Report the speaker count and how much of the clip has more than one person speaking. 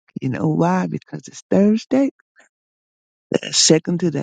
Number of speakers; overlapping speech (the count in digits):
1, no overlap